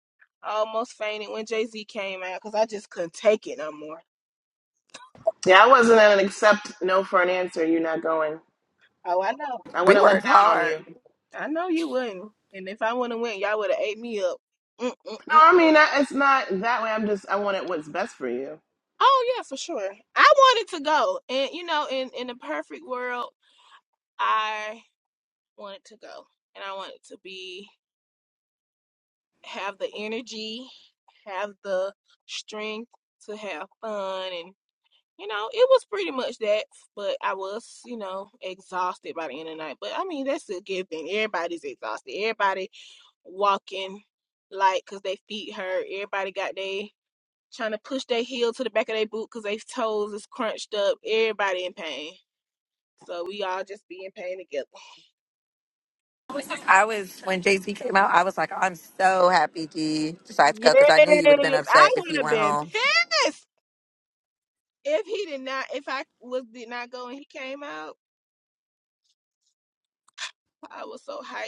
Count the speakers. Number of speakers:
three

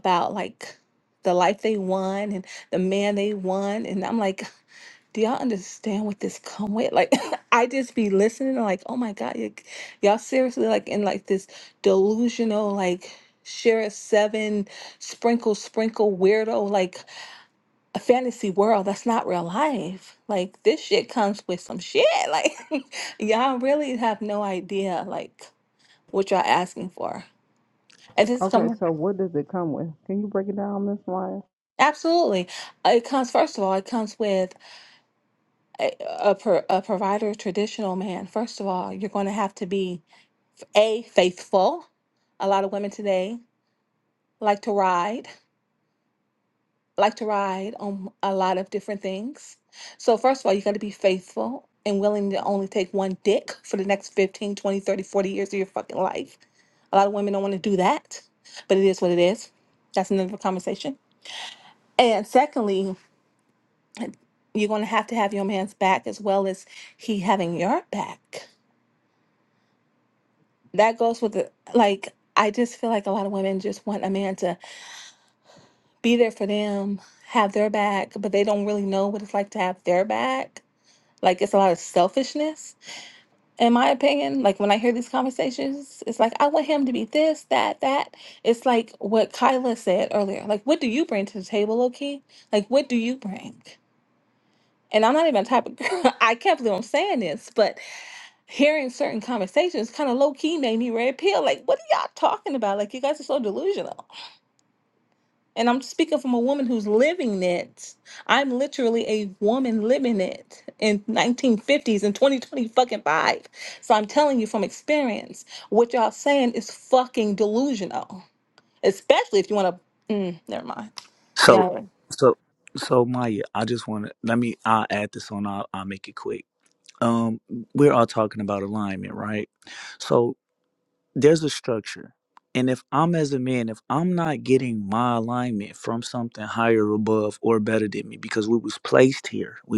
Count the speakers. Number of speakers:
three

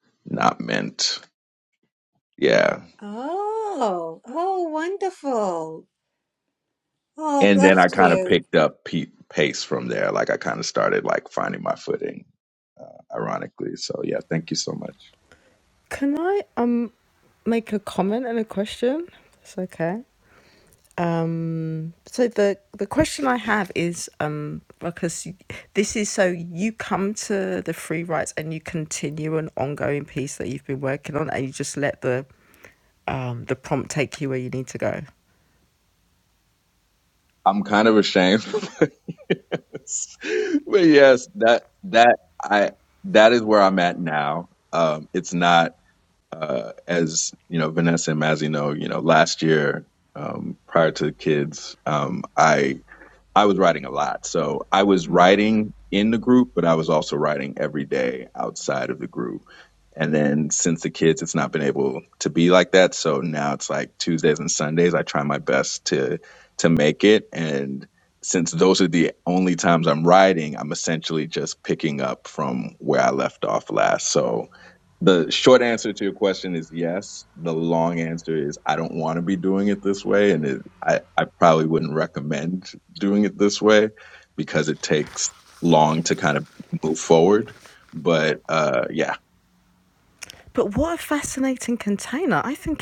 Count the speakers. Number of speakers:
three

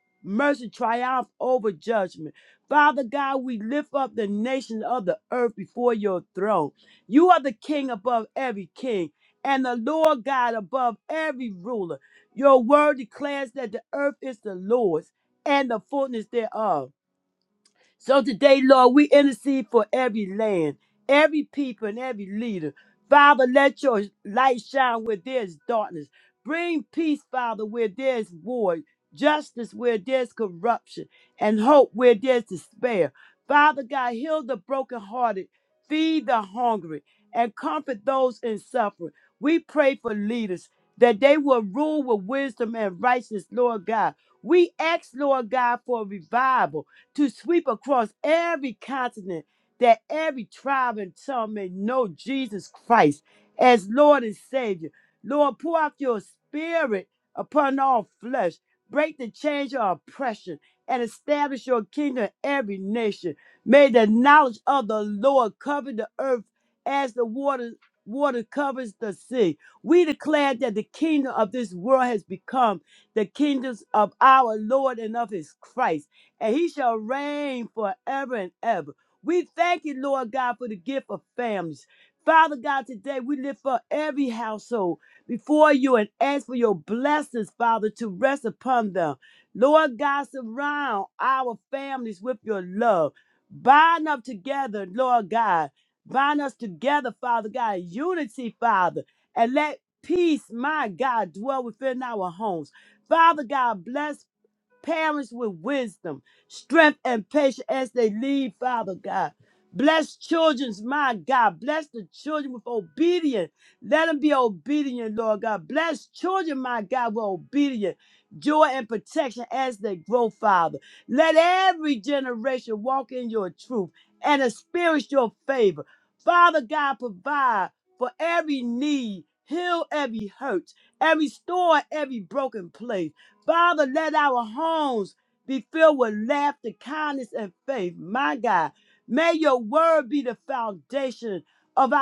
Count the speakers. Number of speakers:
one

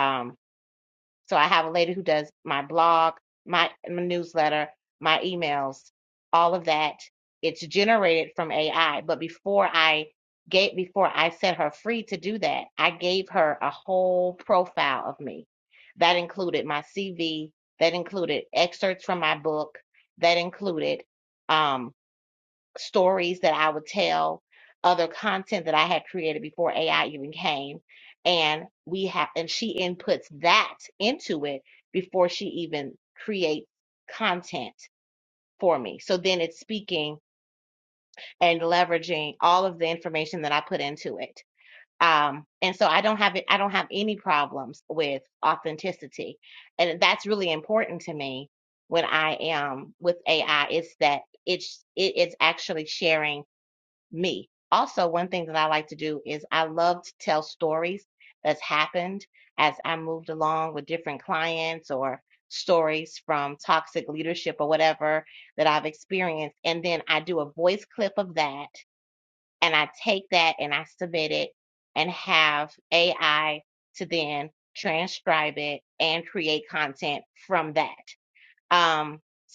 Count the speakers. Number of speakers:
one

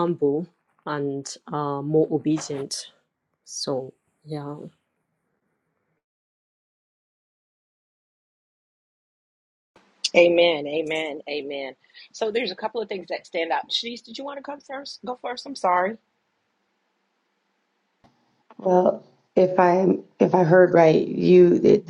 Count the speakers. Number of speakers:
three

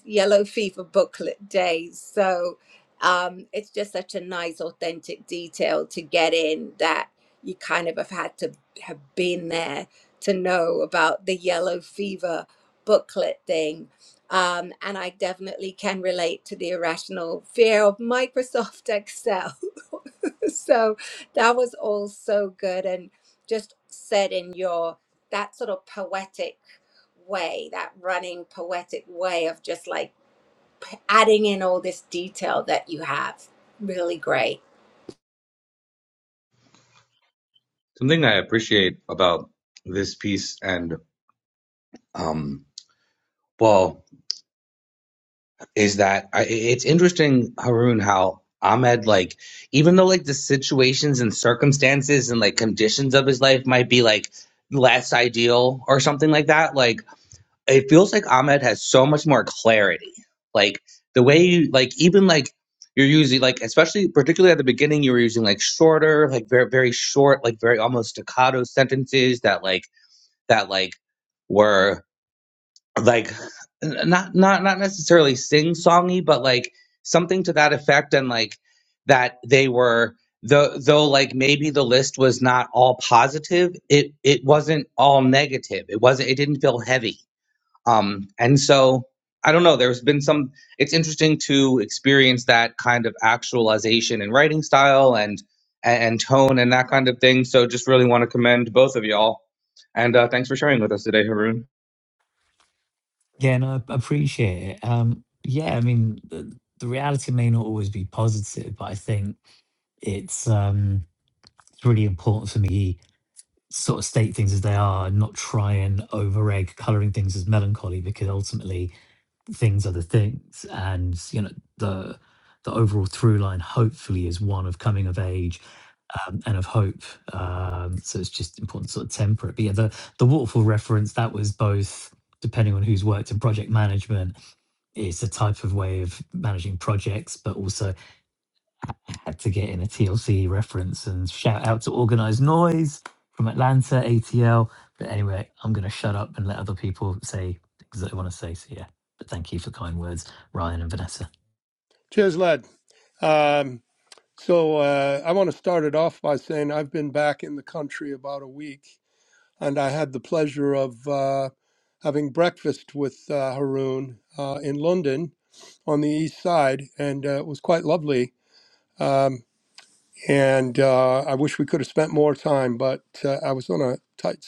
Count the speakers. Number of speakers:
four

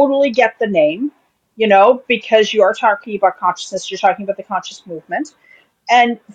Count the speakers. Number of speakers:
one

